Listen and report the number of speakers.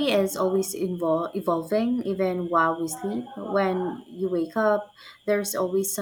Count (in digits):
1